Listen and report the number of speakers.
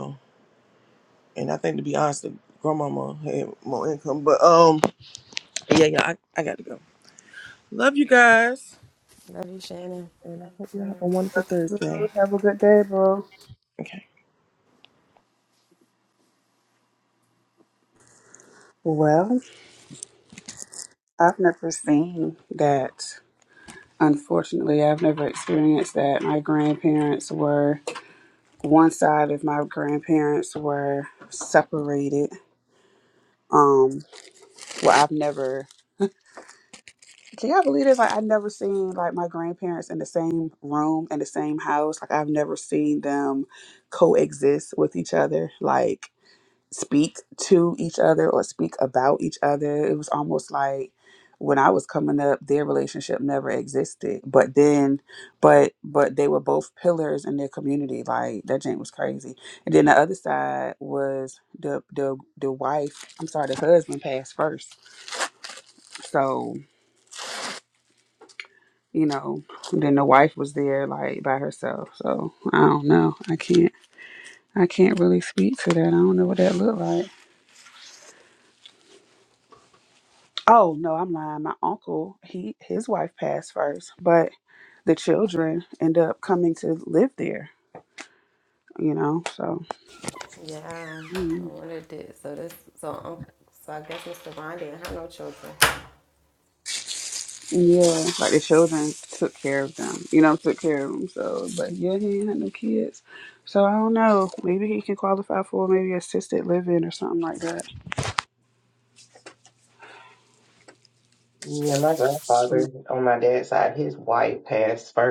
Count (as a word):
four